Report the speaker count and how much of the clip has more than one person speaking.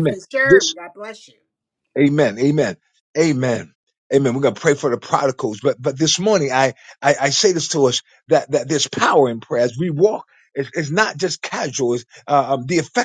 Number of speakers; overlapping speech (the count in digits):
2, about 3%